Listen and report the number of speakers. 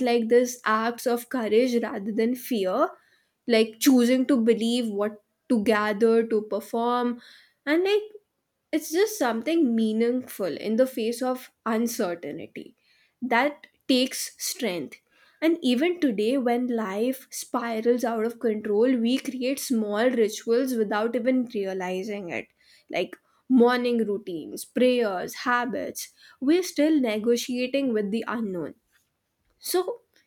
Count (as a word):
one